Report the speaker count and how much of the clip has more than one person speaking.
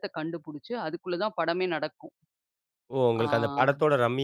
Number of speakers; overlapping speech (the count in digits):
2, about 16%